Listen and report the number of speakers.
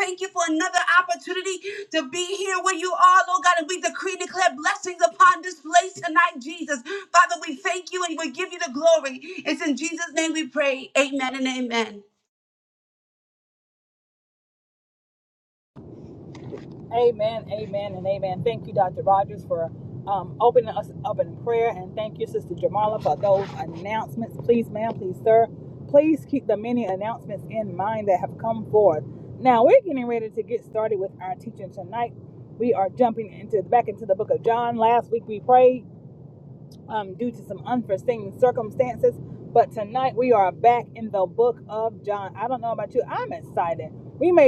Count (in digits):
2